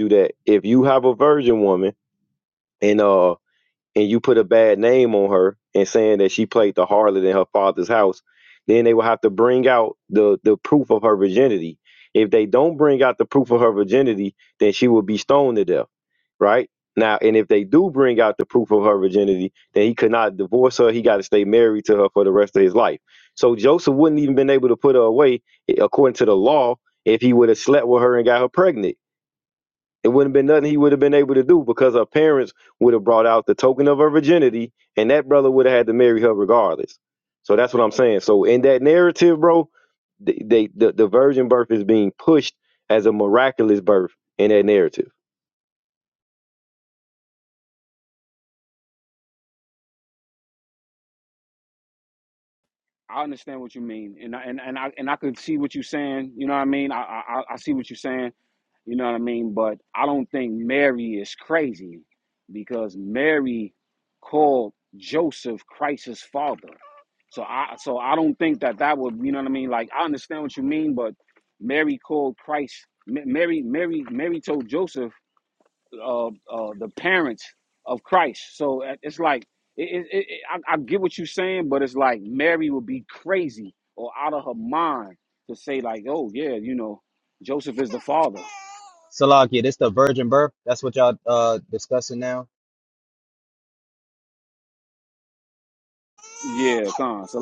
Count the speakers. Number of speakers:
3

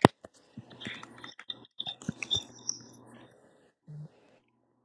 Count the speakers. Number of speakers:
0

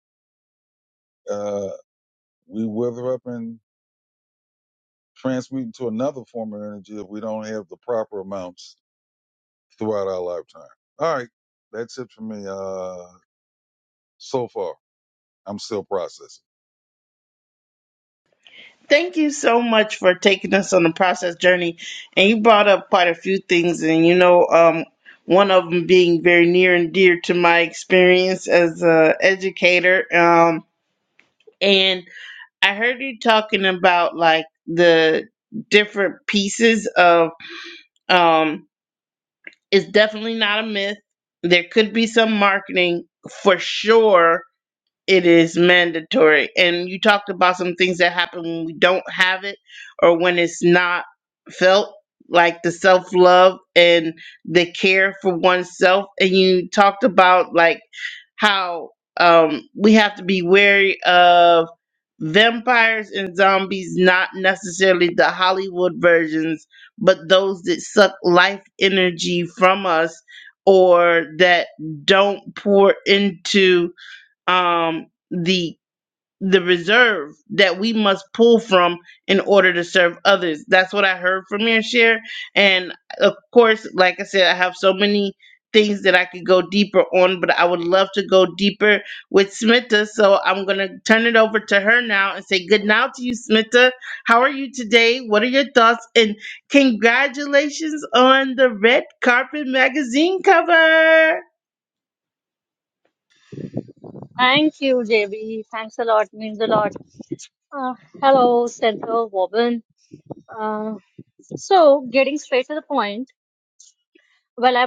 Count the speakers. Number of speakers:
3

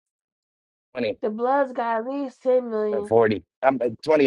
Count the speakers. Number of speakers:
2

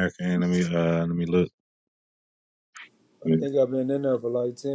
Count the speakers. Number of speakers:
2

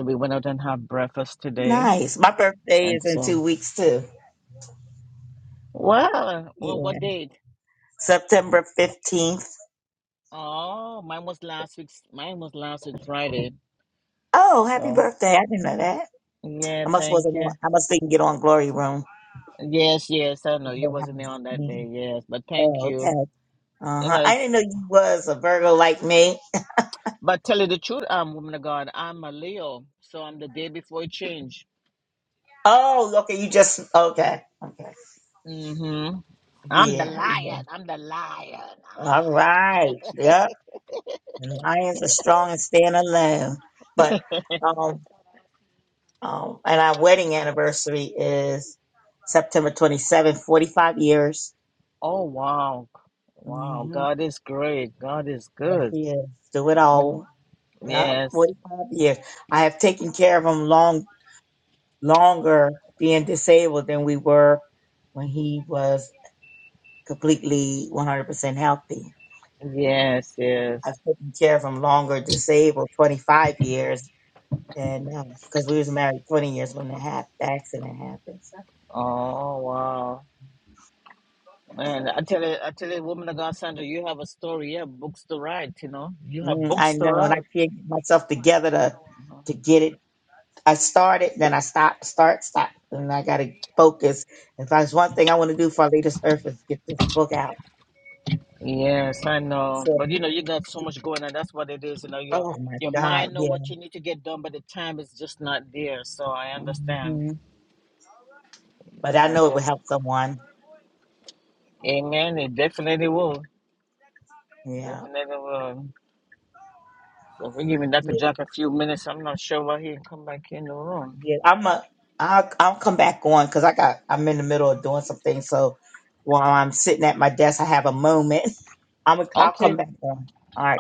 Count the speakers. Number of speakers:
2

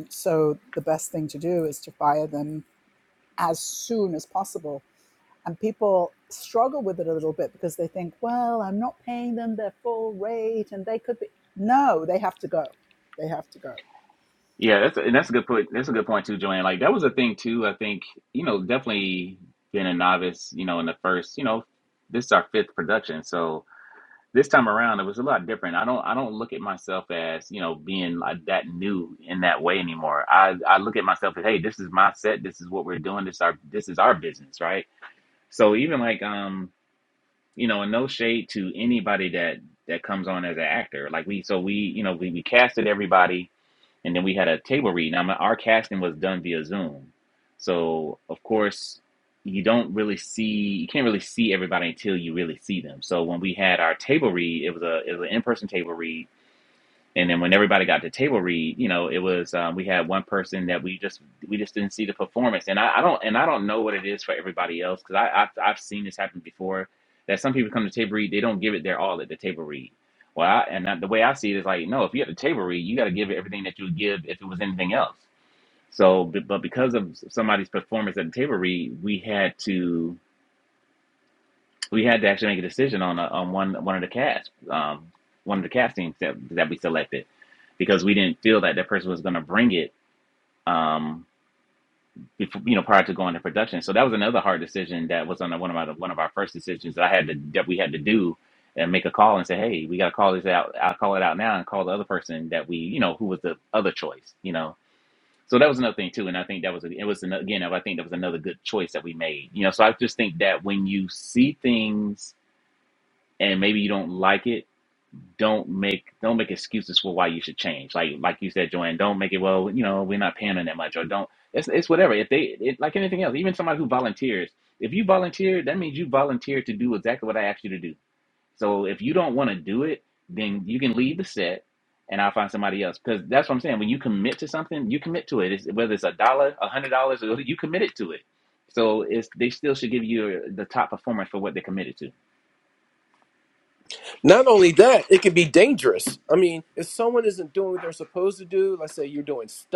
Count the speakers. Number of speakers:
3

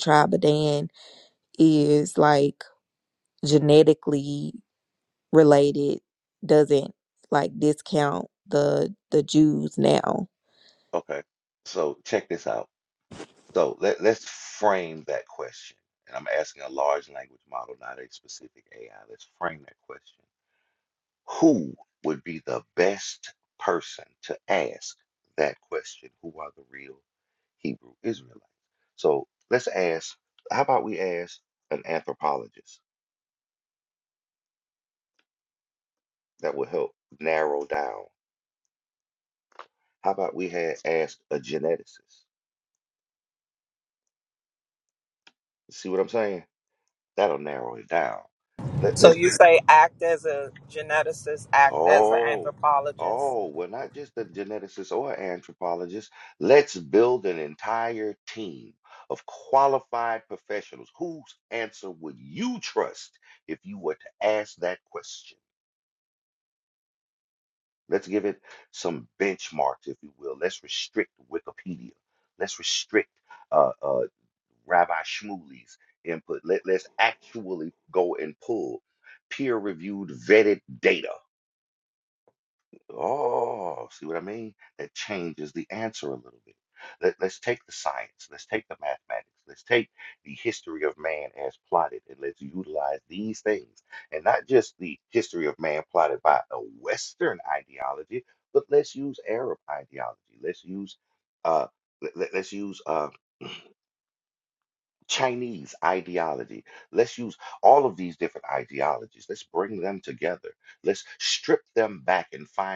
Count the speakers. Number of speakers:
3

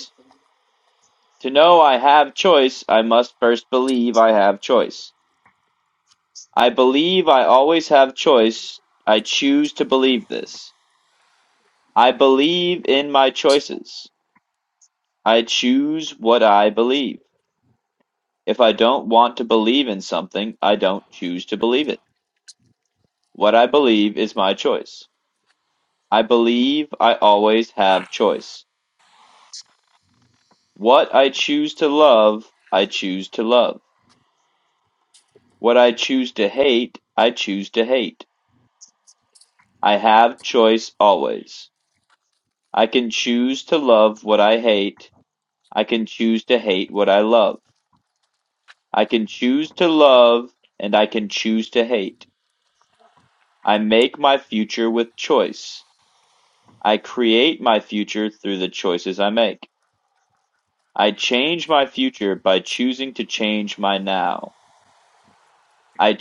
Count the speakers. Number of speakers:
1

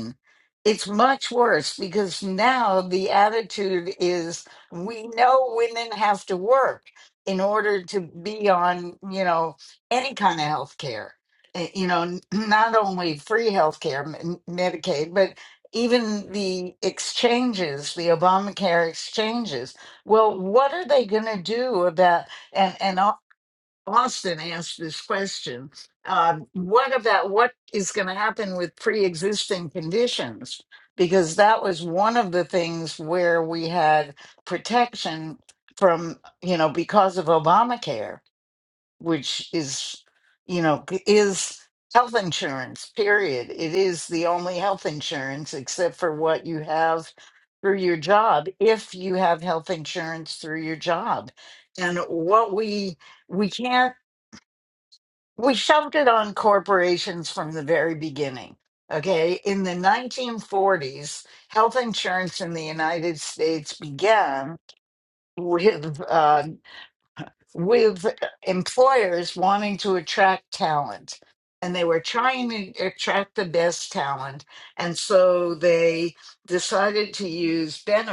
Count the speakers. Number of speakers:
1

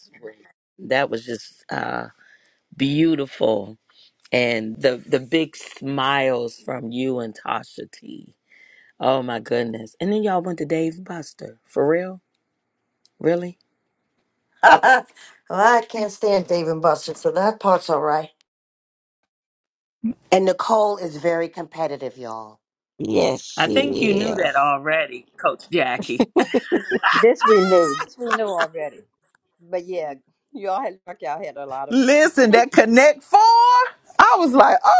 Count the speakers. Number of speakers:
6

